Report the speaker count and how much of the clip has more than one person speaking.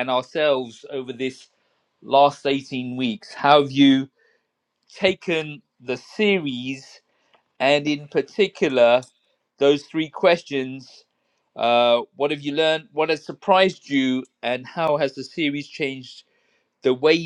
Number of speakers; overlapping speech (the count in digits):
1, no overlap